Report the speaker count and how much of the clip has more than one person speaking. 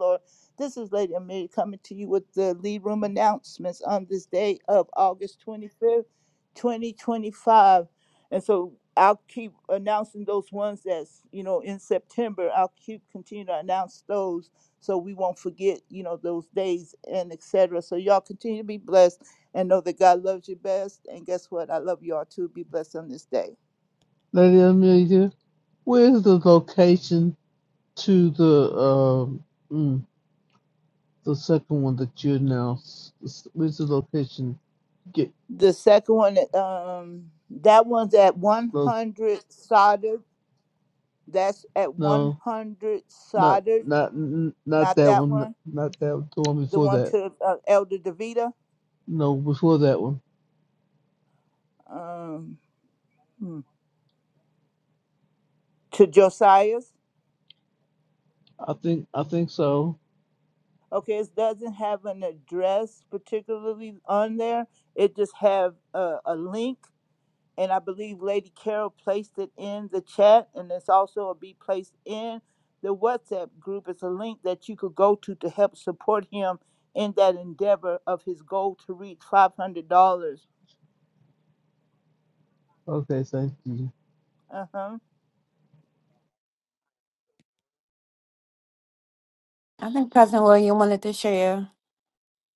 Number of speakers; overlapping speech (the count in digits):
3, about 2%